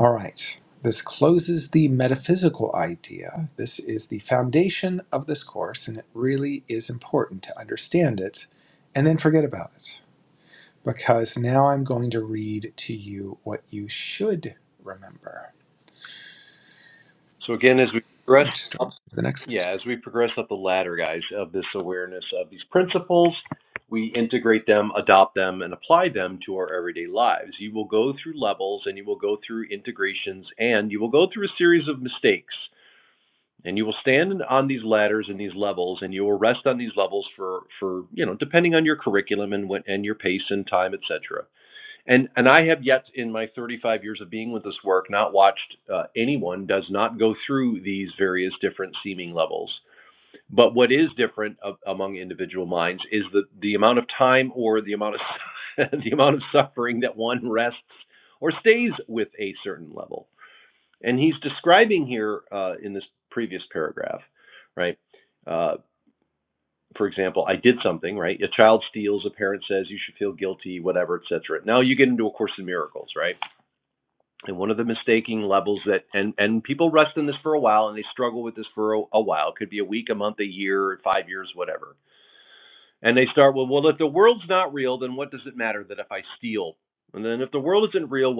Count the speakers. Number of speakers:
2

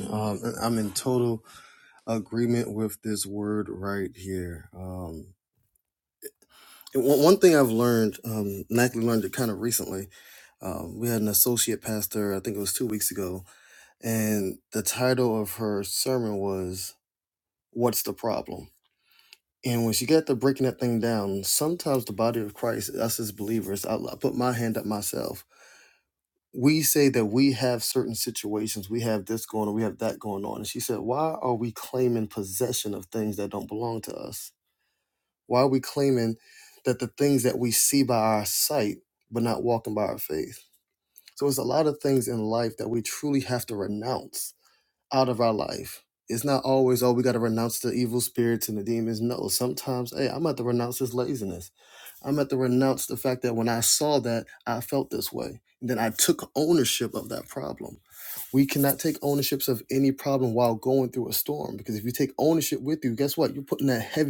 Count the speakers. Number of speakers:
1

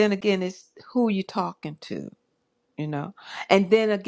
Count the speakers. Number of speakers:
1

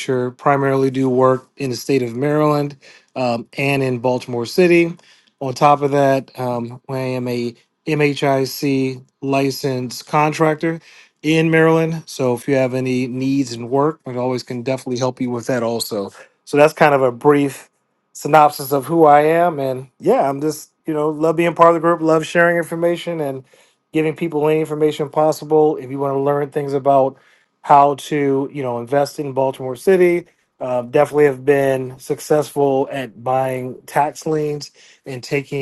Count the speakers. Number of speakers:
1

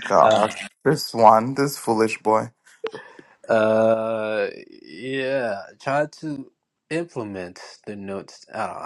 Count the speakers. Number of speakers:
2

